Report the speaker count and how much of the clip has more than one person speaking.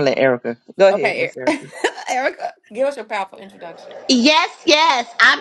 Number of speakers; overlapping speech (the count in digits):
3, about 13%